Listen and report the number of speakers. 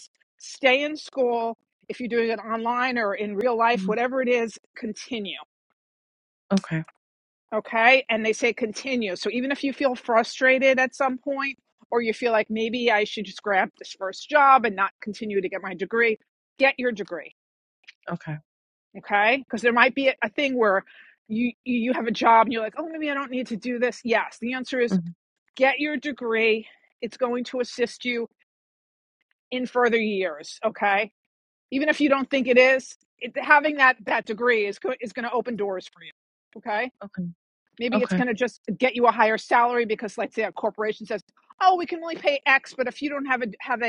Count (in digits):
2